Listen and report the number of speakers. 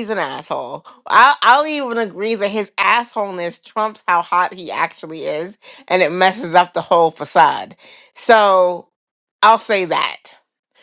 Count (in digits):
1